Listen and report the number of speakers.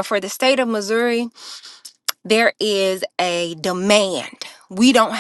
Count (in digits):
1